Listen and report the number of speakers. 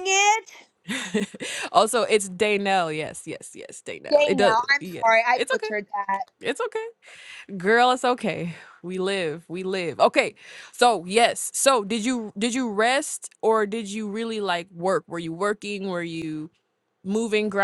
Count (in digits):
2